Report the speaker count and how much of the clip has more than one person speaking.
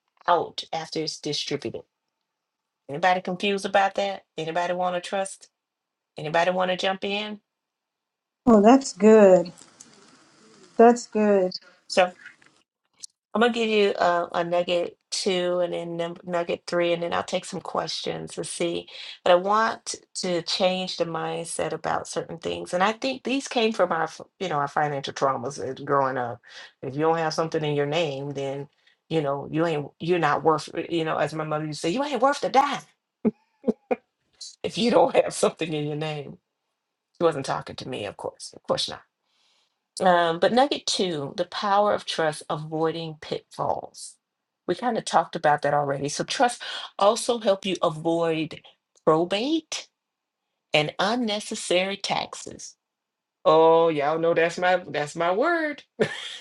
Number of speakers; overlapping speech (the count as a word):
two, no overlap